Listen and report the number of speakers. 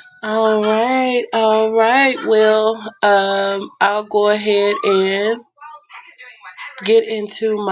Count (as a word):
one